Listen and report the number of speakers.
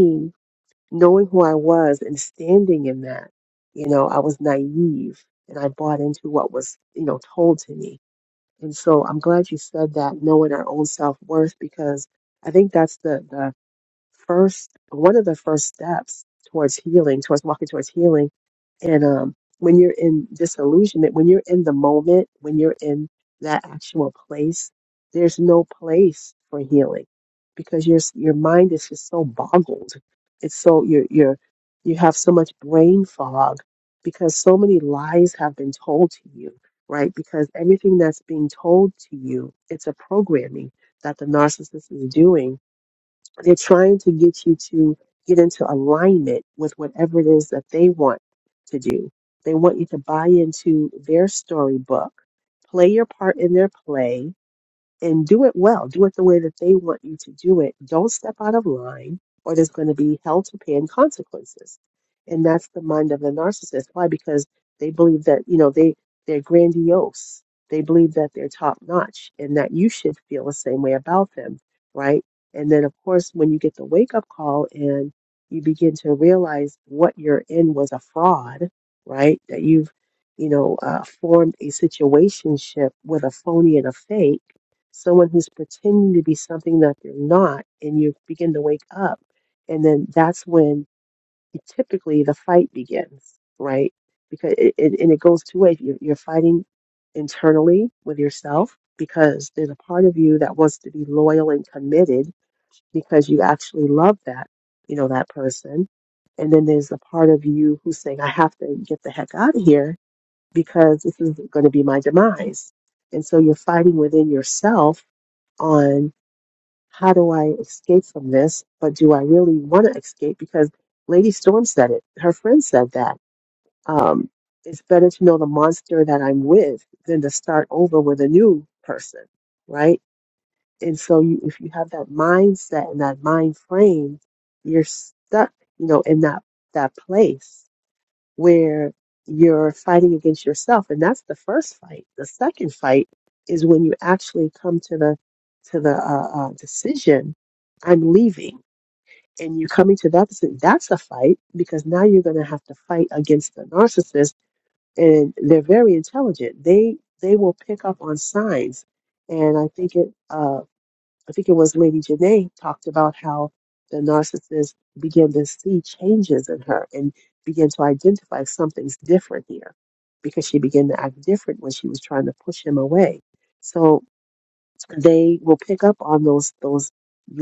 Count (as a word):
one